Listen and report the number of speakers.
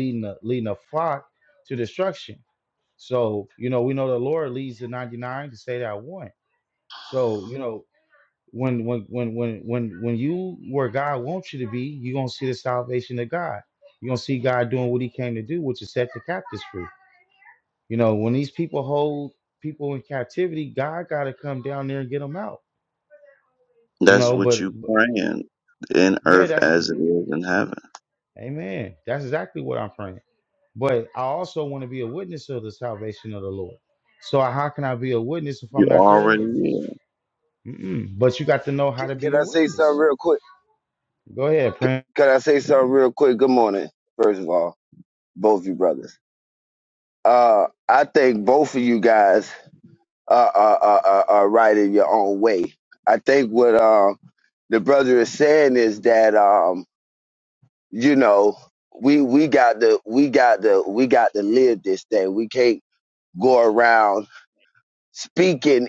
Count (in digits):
3